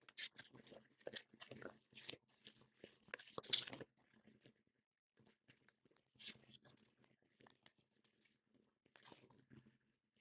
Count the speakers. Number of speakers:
0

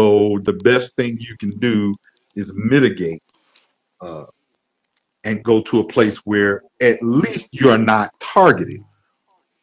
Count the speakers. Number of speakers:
1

